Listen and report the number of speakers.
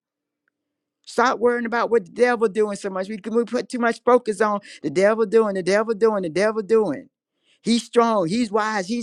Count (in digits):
1